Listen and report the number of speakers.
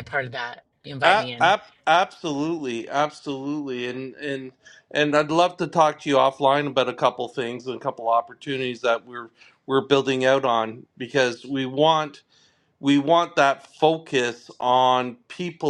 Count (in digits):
2